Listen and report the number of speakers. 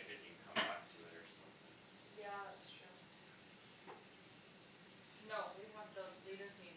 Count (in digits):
2